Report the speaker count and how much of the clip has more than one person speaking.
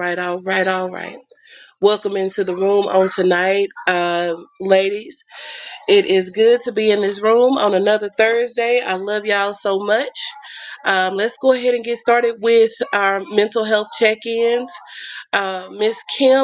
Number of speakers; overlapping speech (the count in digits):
1, no overlap